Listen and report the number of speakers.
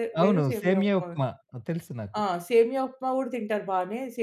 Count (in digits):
2